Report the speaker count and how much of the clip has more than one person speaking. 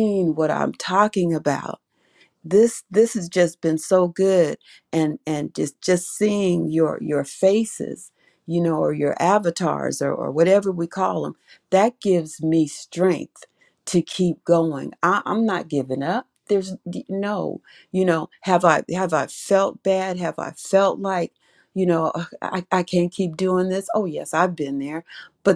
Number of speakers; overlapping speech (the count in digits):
1, no overlap